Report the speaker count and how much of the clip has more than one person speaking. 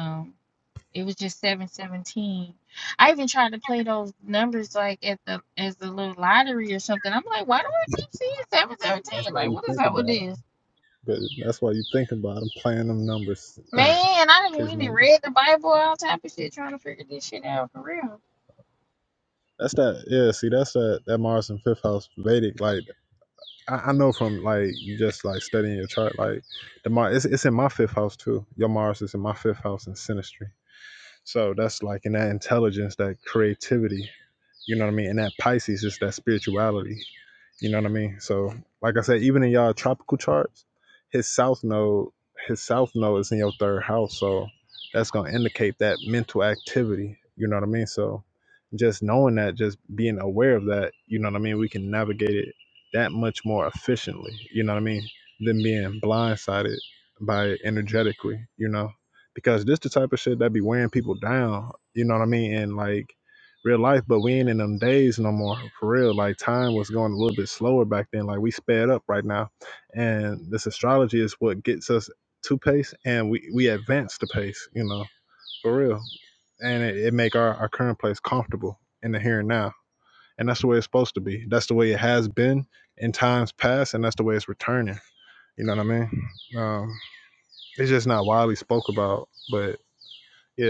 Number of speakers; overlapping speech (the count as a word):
two, about 2%